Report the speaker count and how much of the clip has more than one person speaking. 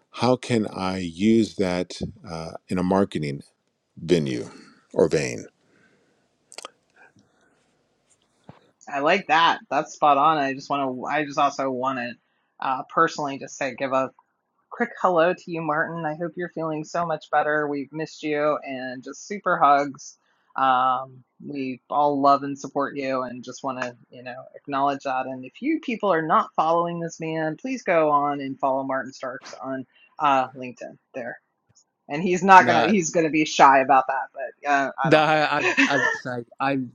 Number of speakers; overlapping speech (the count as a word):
three, about 2%